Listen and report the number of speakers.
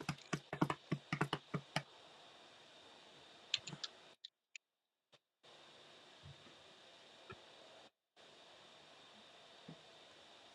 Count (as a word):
zero